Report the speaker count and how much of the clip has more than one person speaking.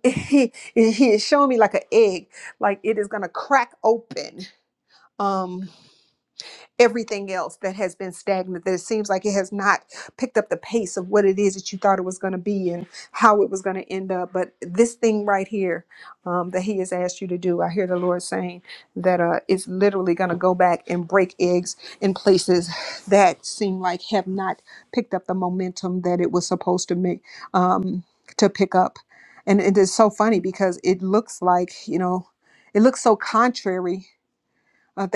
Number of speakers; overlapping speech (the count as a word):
one, no overlap